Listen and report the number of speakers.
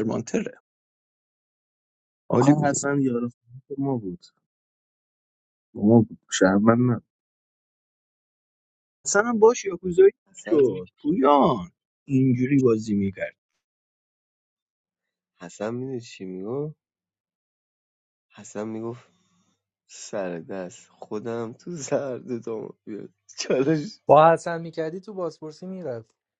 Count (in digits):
4